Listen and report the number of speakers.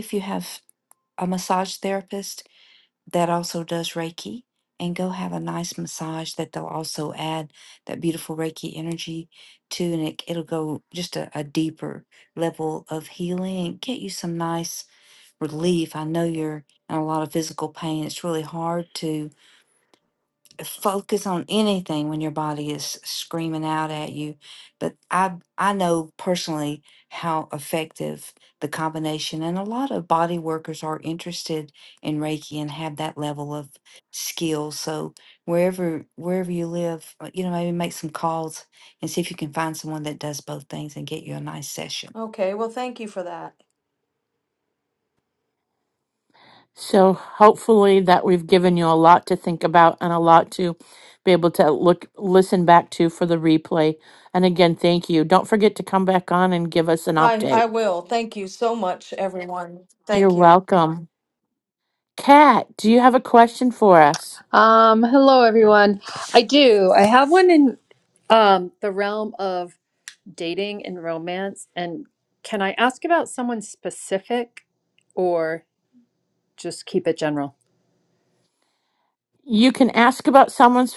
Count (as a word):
four